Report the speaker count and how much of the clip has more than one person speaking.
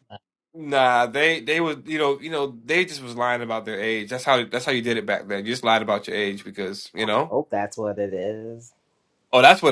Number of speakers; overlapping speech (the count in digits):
2, no overlap